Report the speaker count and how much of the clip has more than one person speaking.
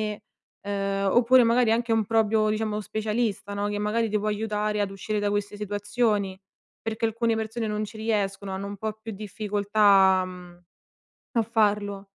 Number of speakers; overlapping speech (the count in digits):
1, no overlap